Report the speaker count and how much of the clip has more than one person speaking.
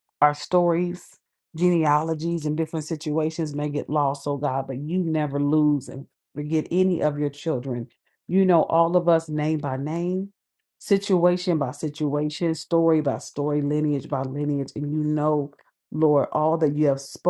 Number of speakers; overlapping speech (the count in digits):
1, no overlap